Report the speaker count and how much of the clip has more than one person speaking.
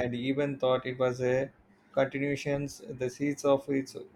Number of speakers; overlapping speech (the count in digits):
1, no overlap